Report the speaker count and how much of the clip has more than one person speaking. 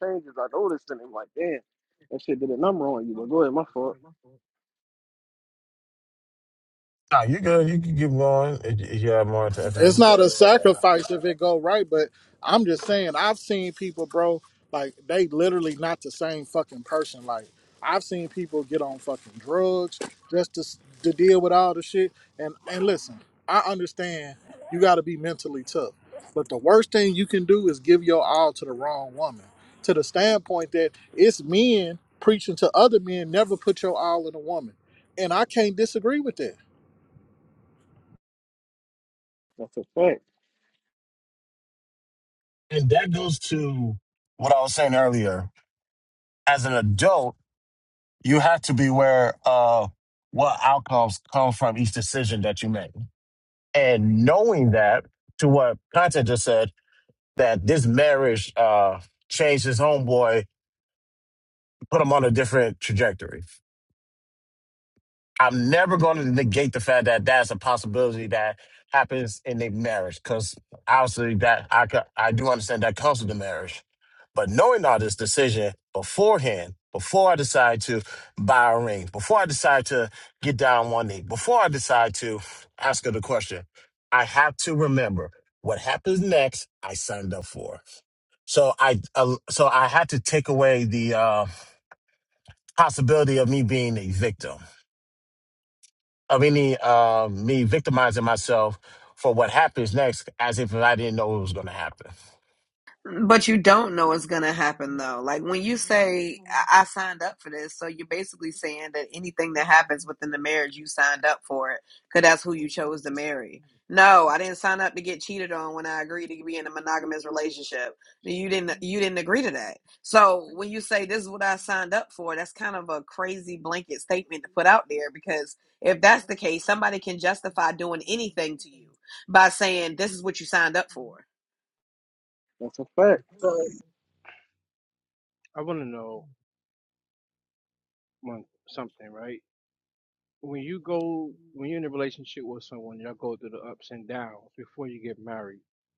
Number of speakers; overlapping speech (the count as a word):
five, under 1%